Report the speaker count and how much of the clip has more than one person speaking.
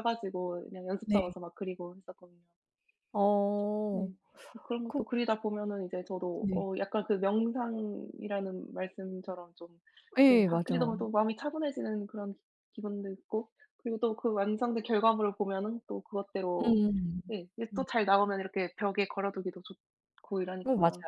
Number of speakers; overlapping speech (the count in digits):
2, about 10%